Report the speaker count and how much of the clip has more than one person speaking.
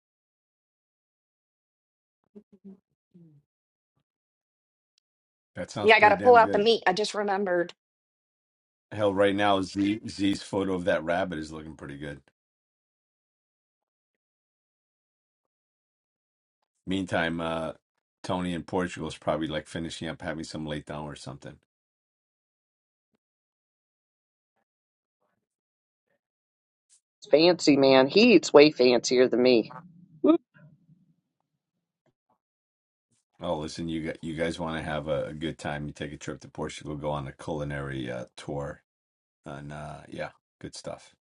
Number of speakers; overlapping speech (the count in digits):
3, about 2%